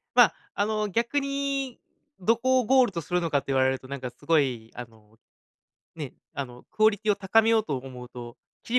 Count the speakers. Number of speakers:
1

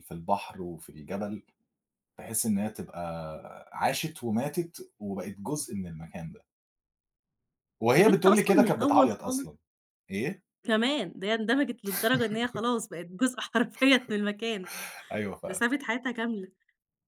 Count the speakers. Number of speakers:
2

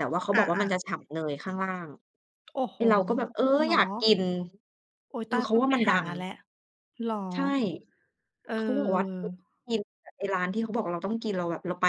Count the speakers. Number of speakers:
2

